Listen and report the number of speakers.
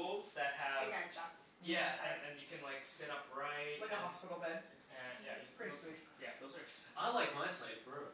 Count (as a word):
four